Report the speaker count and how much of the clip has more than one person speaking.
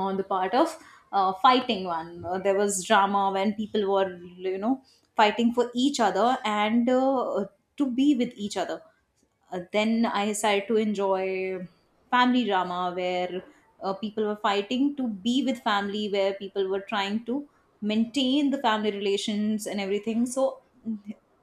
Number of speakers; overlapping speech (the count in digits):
1, no overlap